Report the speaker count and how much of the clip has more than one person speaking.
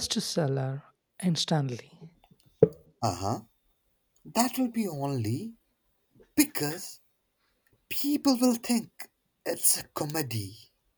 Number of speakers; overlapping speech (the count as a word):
two, no overlap